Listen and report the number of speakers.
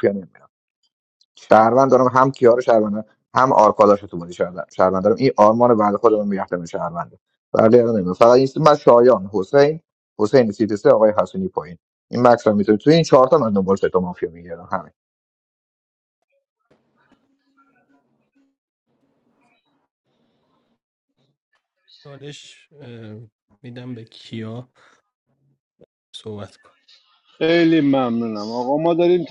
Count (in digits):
3